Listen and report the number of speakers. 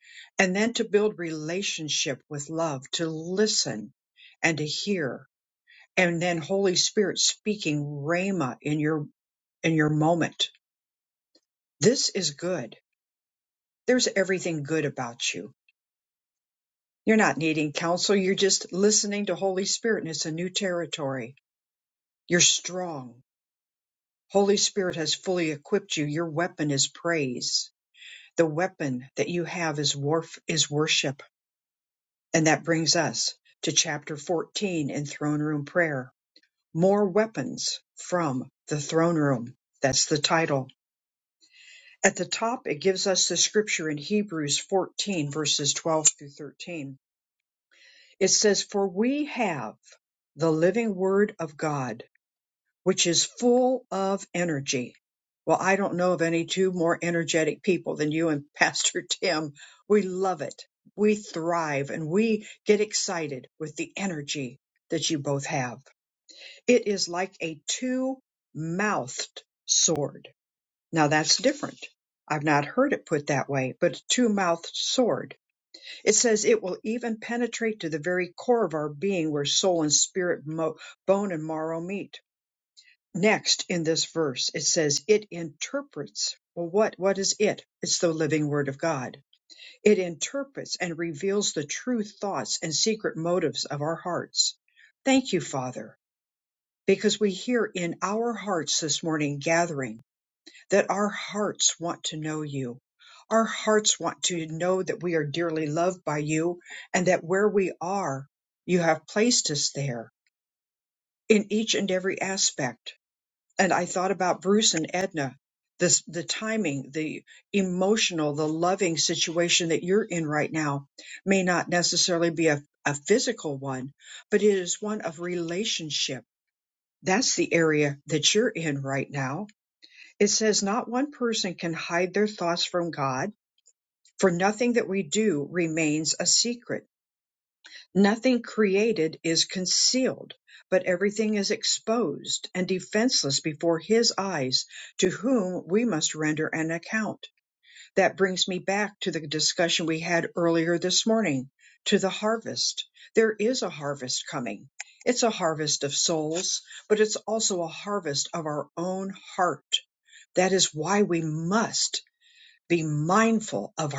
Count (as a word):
one